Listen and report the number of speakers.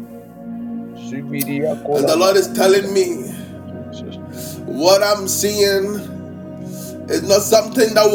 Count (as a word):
two